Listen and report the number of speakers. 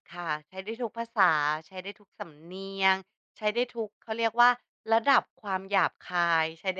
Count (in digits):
1